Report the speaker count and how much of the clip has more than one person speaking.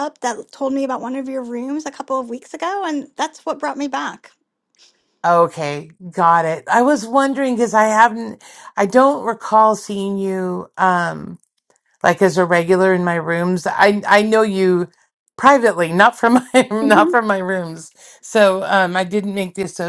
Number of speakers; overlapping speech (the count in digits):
2, about 2%